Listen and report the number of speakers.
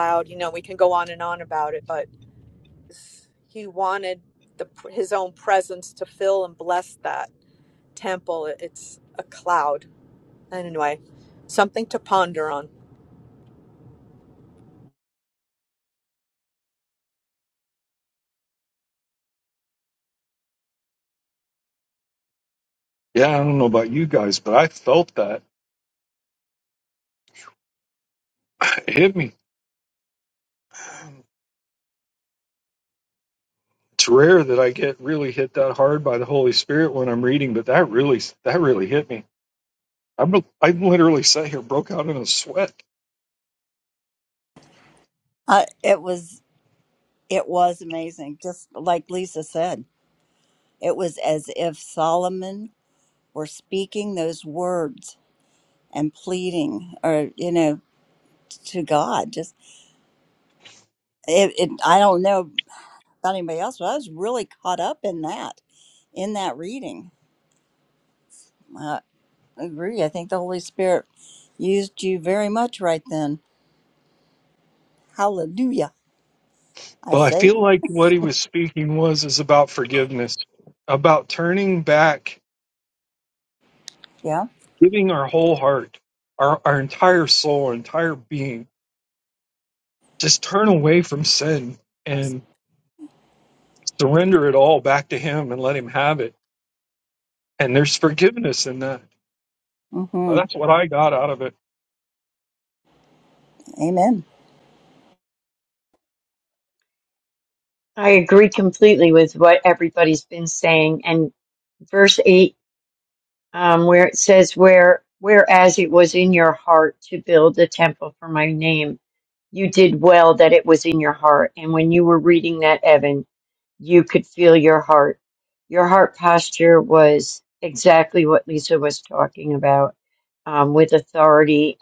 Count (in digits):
4